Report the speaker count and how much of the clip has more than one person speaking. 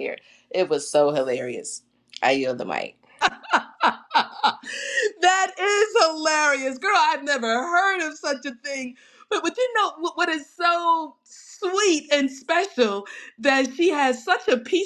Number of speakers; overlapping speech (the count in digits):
2, no overlap